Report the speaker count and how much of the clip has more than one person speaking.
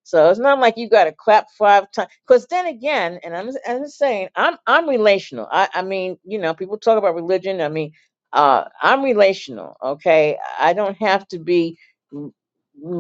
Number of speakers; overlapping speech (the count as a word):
one, no overlap